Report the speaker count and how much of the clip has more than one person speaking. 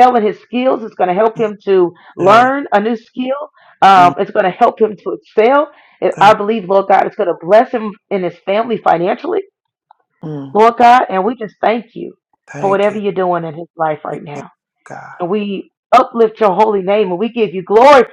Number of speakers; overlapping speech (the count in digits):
2, about 8%